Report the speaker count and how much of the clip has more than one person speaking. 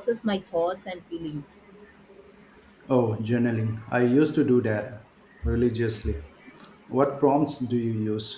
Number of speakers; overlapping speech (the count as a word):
two, no overlap